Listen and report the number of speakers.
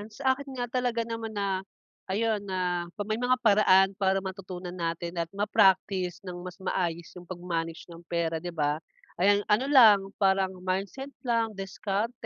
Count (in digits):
1